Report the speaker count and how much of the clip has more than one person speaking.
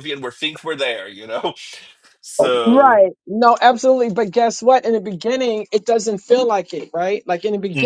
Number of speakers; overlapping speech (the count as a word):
two, about 7%